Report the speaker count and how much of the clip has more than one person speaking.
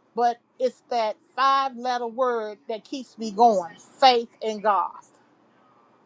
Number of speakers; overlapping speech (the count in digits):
1, no overlap